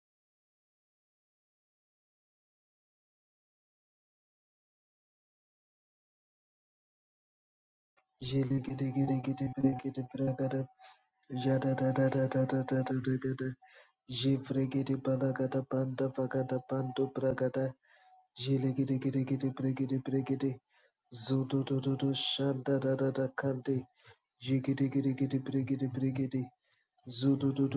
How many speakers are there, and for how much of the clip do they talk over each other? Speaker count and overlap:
1, no overlap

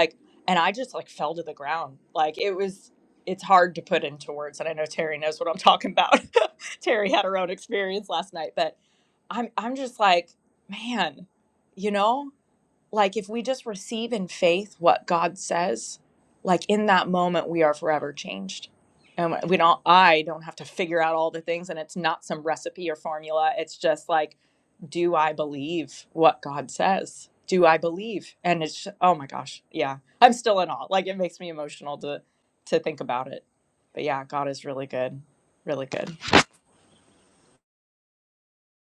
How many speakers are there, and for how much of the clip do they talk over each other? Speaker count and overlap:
1, no overlap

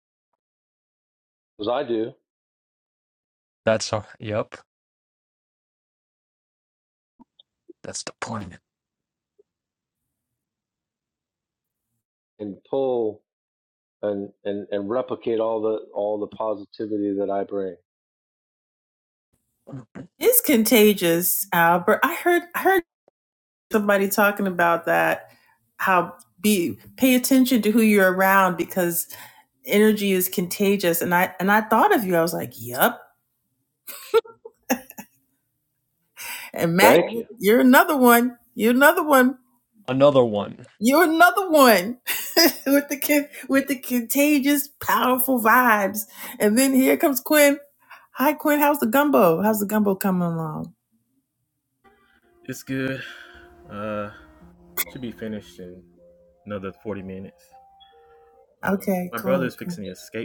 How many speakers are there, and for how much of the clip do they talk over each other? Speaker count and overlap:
4, about 2%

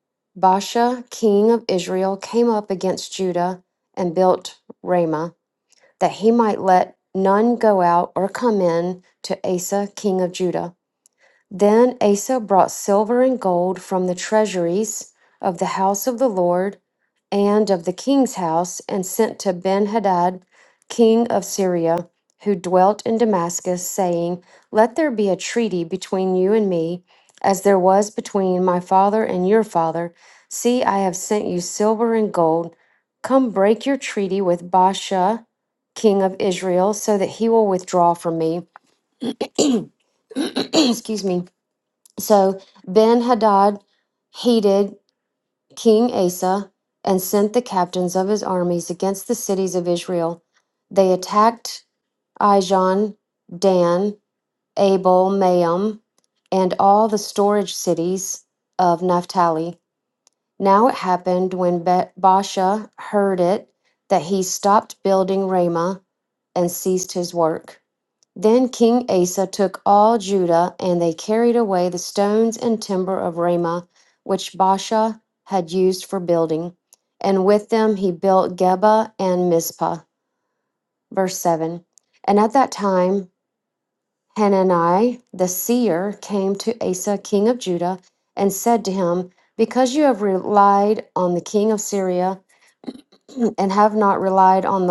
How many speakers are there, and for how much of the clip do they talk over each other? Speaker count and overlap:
1, no overlap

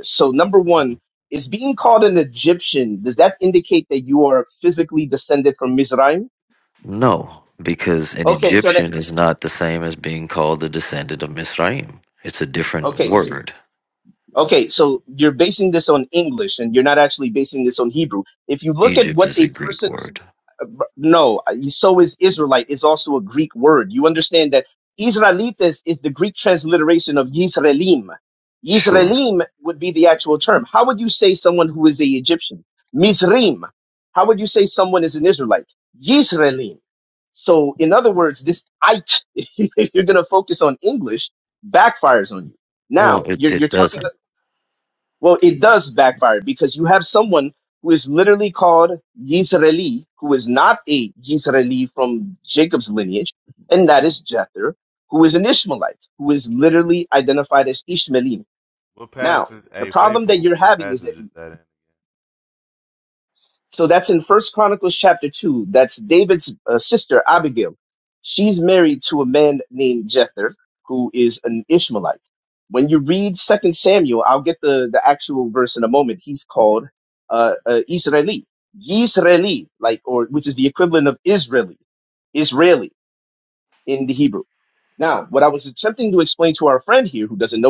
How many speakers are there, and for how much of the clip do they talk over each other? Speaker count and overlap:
3, about 6%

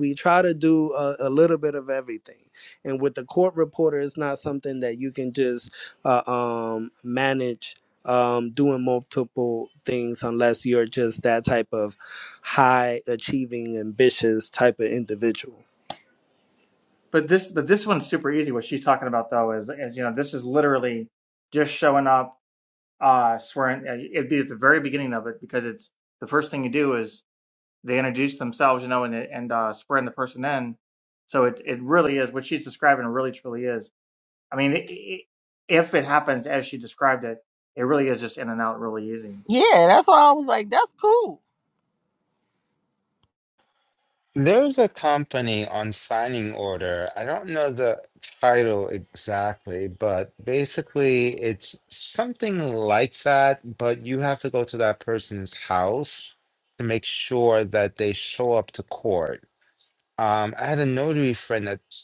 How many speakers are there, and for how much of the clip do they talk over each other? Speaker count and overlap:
4, no overlap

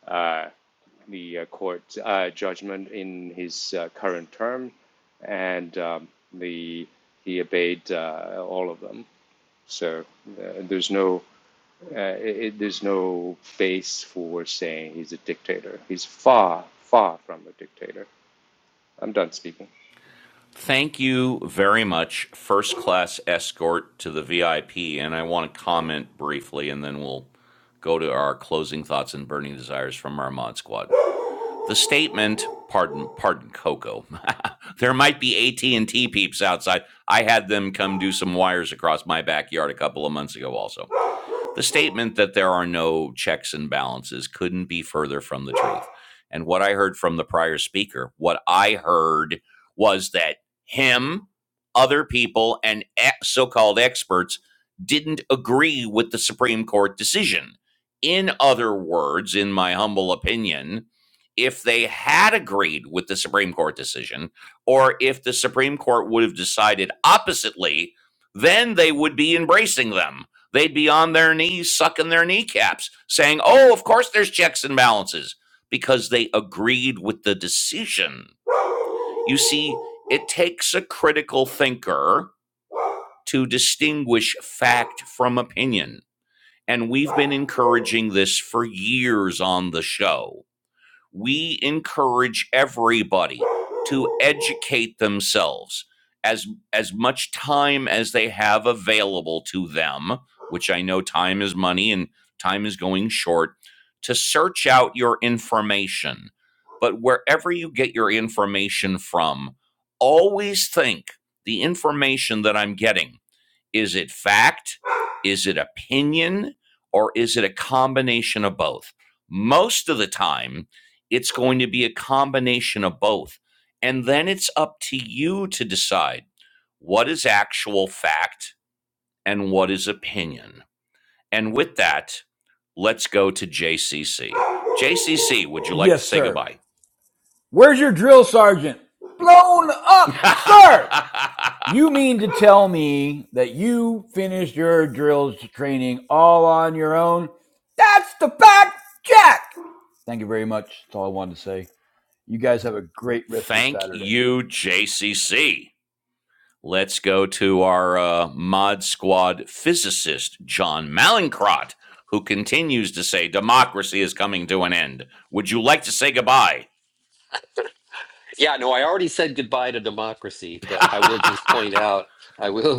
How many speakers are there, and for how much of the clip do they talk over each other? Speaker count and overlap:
4, about 1%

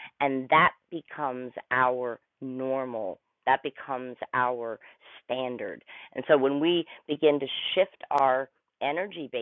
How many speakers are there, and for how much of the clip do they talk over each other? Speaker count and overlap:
1, no overlap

